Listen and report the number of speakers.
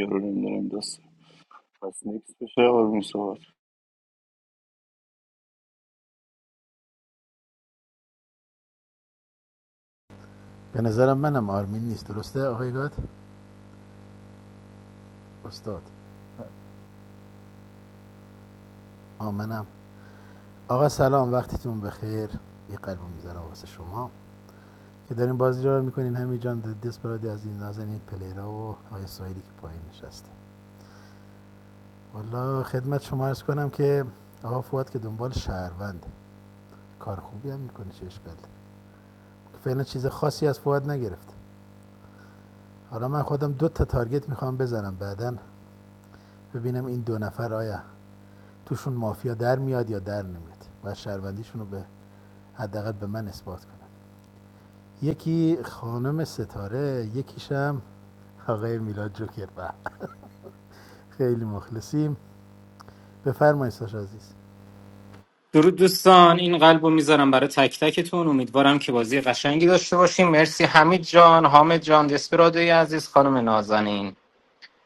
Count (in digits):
3